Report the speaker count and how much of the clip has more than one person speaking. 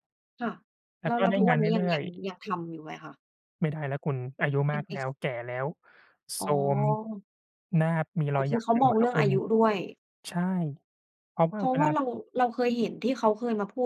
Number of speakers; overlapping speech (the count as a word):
two, about 23%